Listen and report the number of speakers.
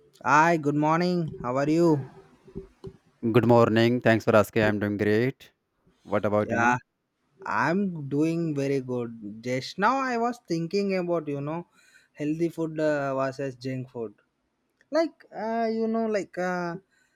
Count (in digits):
2